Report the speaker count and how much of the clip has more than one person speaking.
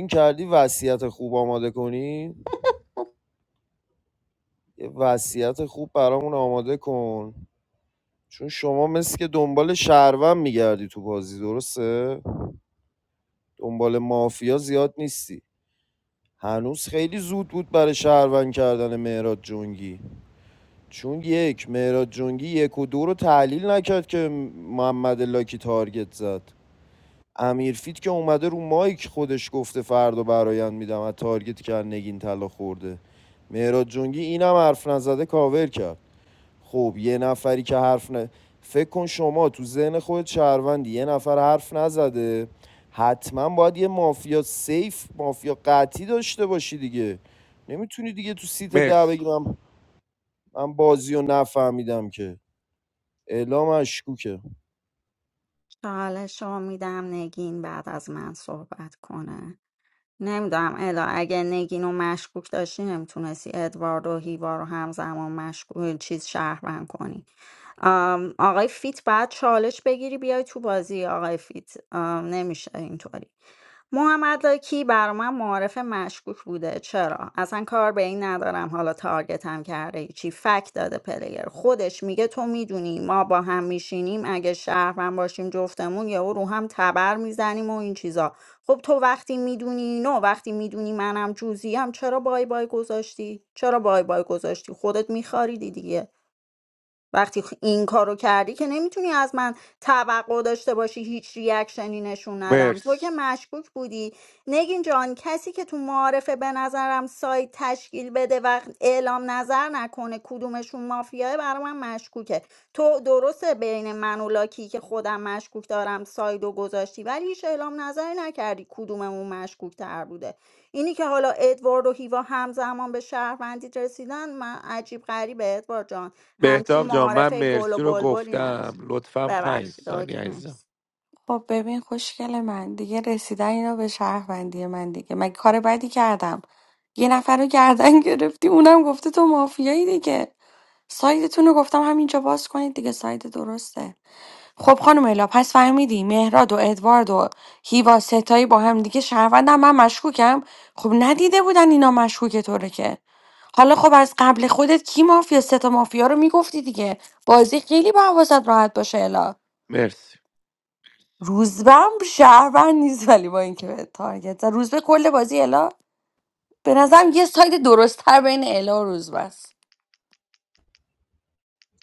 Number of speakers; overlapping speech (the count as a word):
four, about 2%